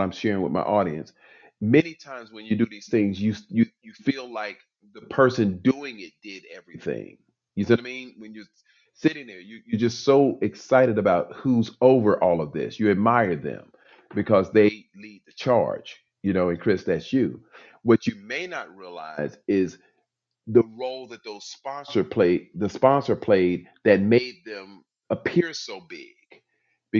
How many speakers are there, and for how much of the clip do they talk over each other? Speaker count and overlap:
1, no overlap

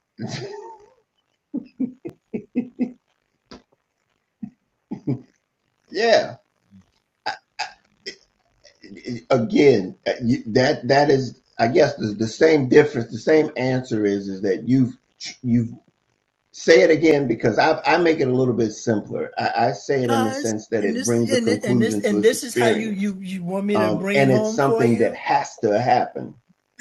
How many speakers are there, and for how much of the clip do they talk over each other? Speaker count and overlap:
2, about 15%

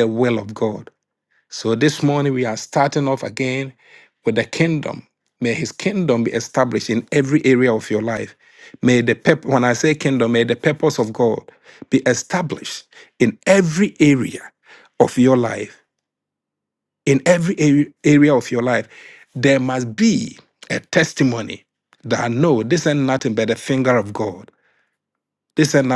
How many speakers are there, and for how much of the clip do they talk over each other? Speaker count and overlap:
1, no overlap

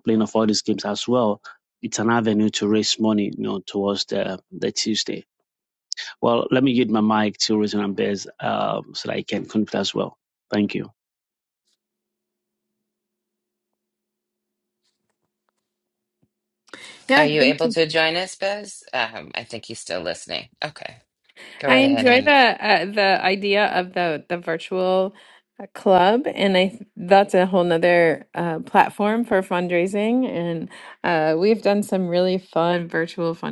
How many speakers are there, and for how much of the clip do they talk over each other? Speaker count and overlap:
3, about 4%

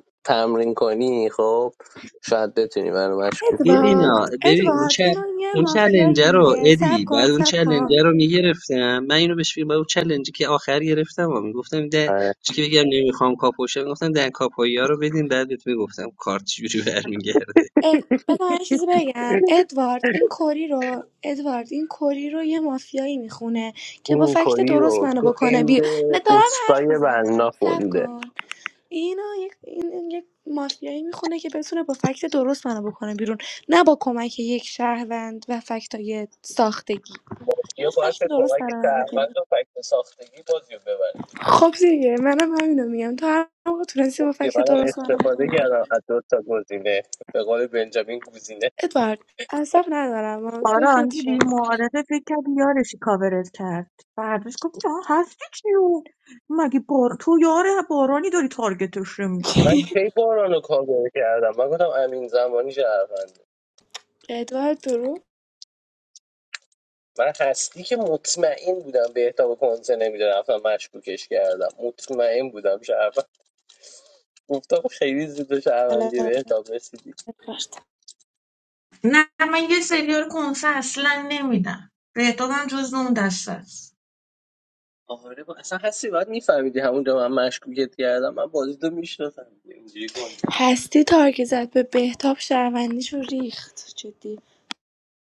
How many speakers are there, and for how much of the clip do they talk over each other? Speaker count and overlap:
4, about 13%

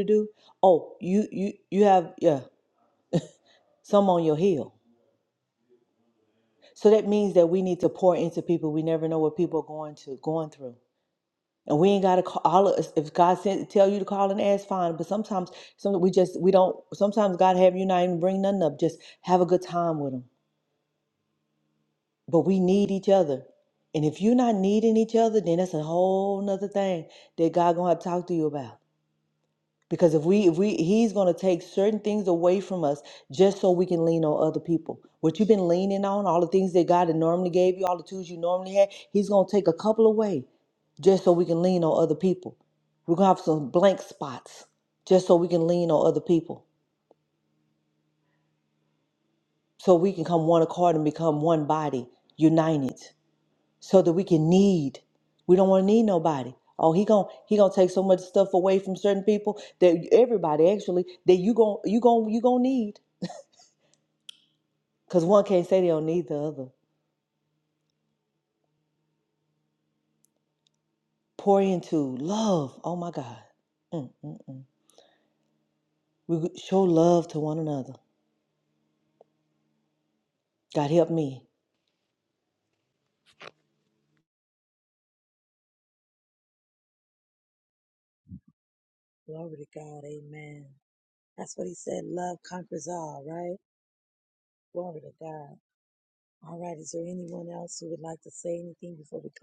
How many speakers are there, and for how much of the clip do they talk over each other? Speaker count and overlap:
2, no overlap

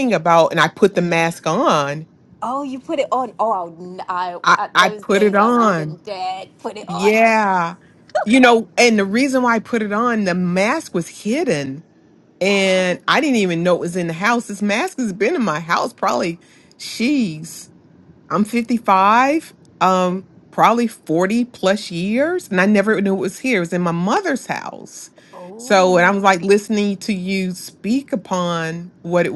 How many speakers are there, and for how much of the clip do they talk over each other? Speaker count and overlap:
2, about 10%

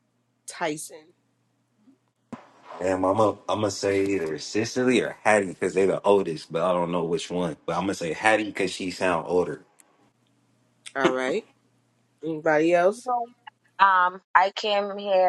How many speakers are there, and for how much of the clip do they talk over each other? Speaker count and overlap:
3, no overlap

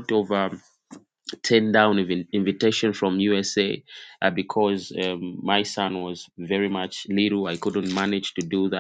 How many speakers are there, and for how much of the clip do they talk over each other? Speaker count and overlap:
1, no overlap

